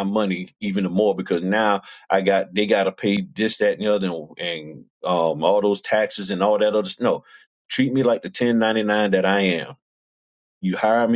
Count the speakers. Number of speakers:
1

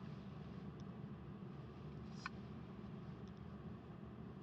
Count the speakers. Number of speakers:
0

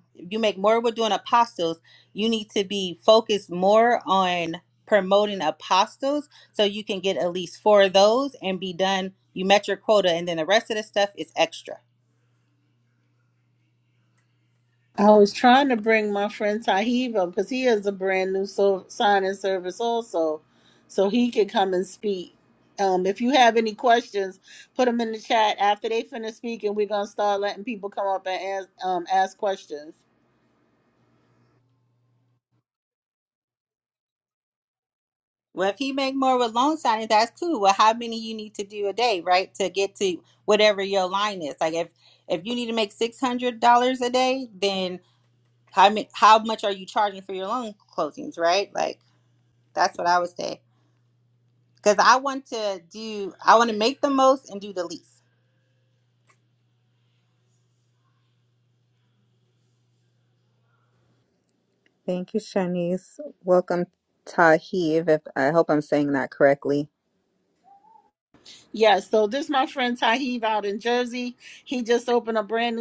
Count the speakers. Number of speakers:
3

